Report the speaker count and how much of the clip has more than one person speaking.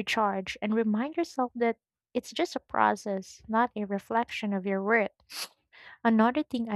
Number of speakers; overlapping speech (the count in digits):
1, no overlap